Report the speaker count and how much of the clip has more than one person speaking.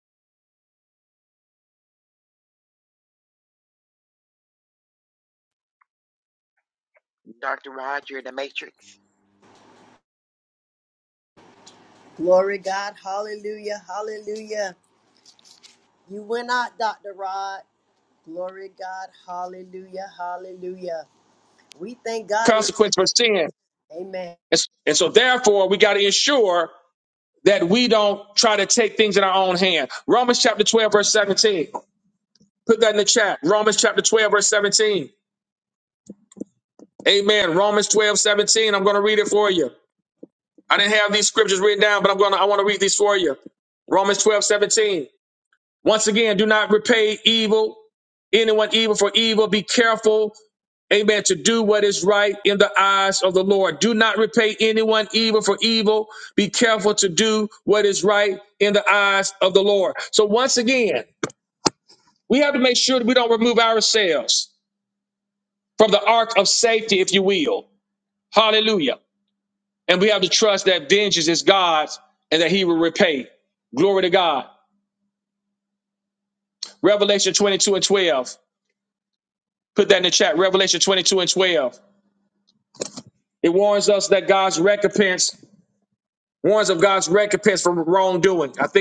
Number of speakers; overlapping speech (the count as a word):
three, under 1%